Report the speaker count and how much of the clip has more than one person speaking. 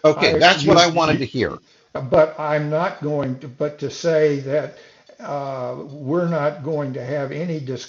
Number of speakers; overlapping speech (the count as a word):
two, about 14%